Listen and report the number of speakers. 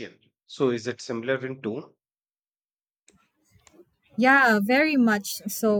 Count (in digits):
2